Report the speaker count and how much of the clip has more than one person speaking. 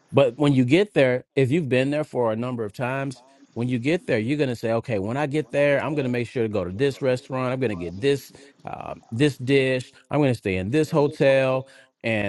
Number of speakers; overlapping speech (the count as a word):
one, no overlap